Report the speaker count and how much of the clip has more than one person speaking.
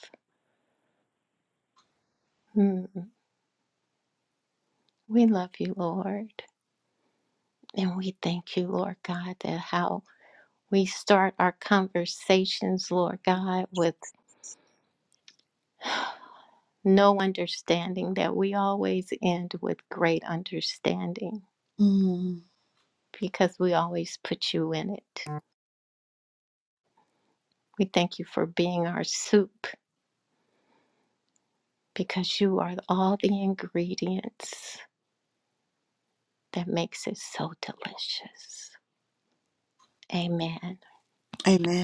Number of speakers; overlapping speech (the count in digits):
2, no overlap